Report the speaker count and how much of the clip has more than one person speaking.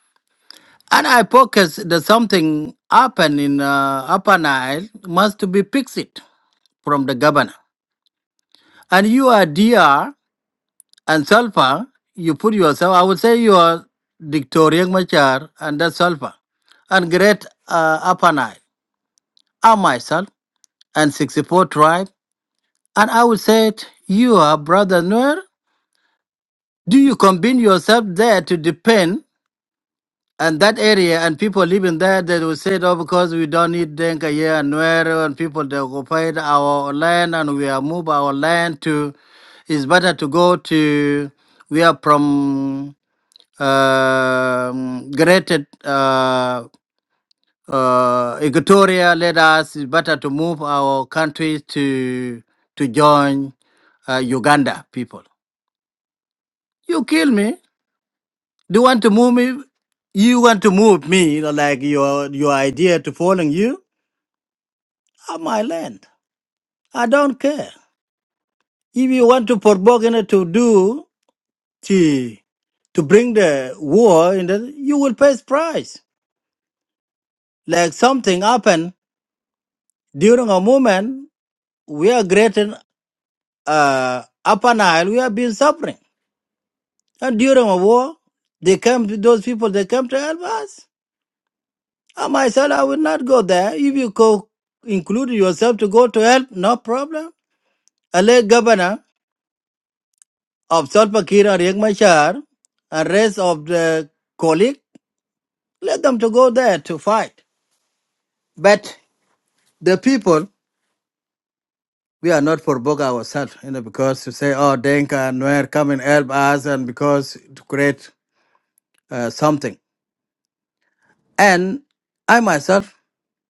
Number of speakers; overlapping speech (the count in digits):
1, no overlap